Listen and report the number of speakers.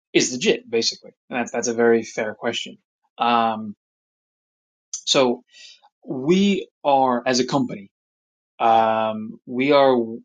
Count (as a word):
one